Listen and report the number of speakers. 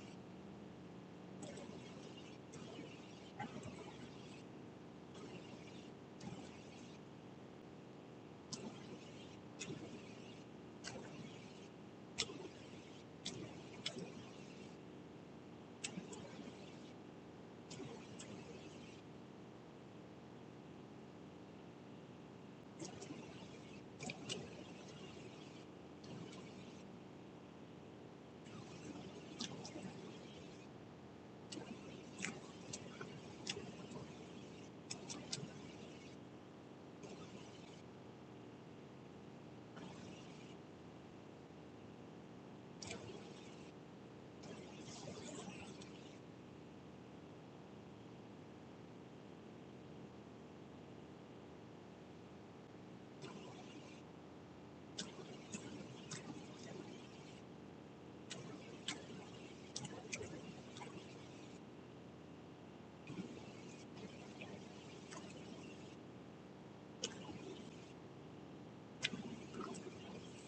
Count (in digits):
0